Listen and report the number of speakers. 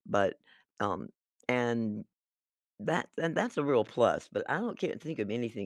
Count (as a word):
one